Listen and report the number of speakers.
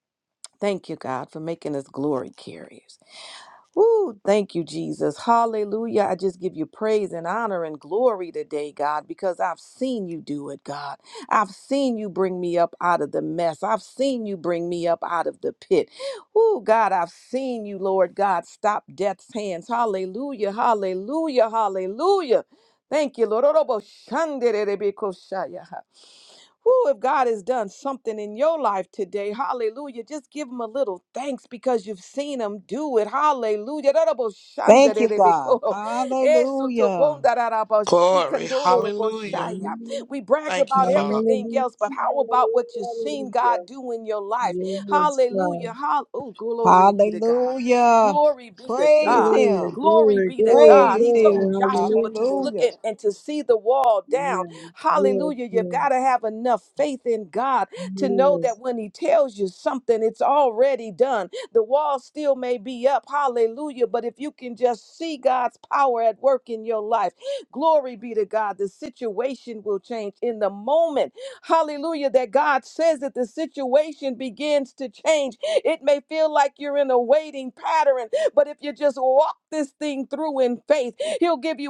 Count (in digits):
4